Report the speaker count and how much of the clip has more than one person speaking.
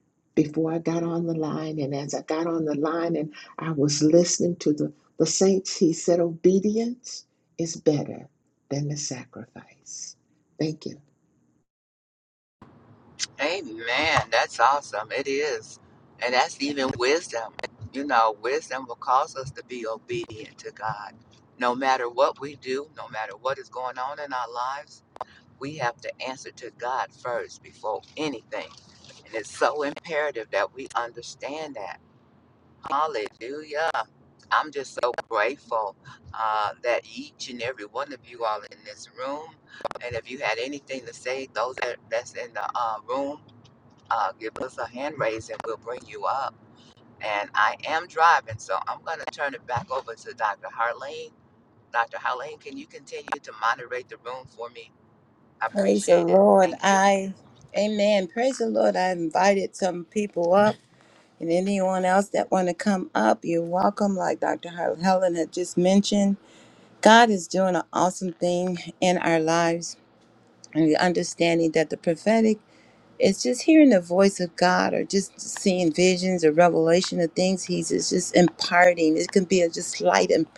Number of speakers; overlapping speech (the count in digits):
3, about 2%